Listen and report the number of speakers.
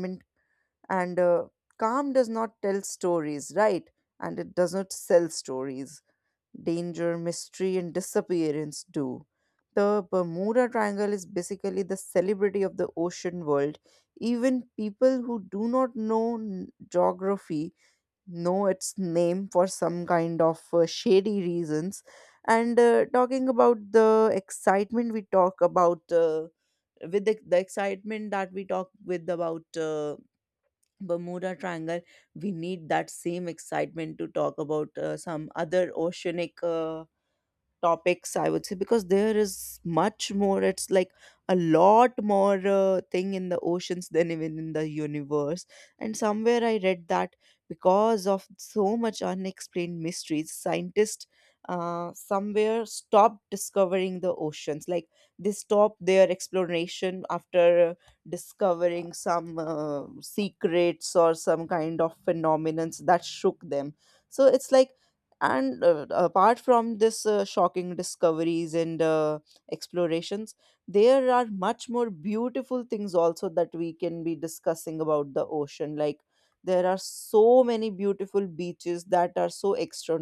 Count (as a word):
one